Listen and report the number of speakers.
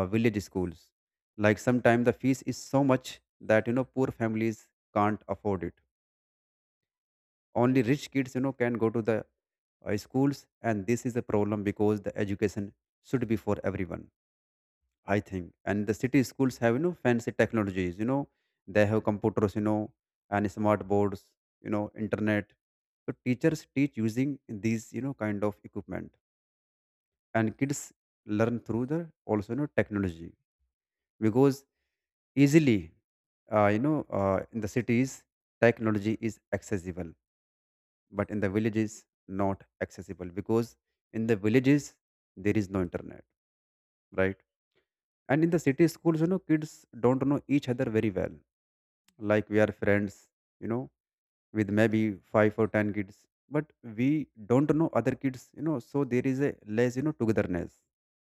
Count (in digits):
1